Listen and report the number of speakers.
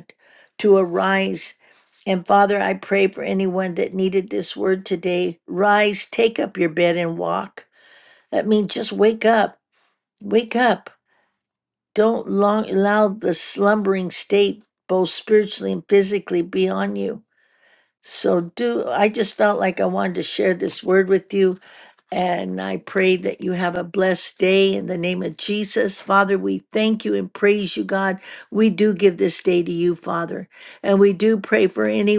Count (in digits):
1